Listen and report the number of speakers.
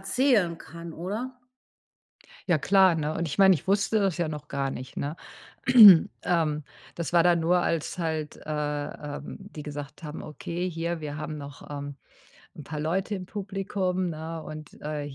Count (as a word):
two